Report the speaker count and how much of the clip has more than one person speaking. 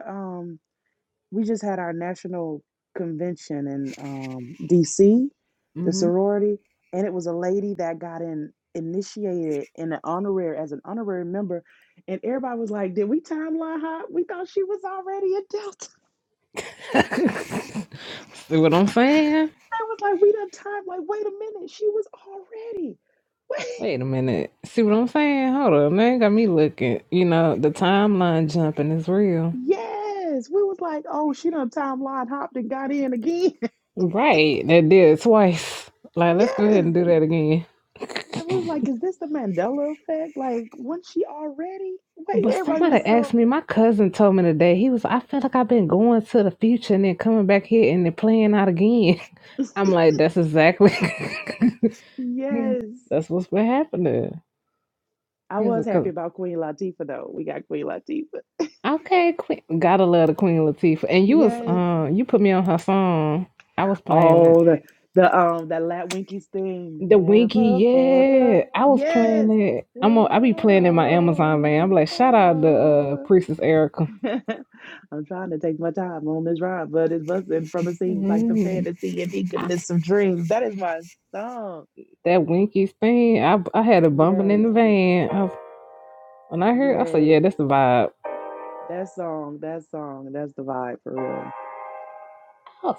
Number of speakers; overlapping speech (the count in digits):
2, about 12%